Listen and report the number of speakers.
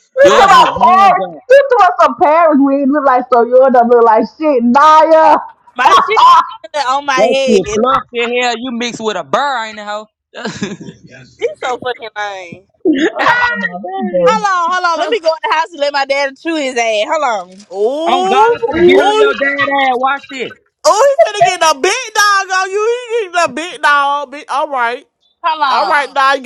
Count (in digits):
4